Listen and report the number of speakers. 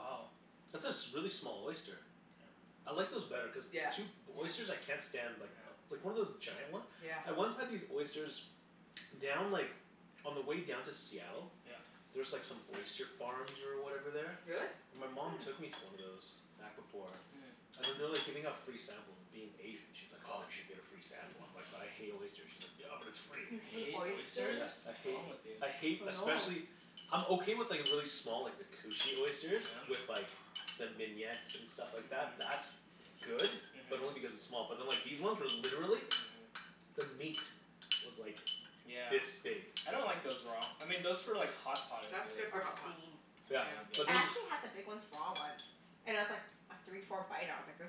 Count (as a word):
four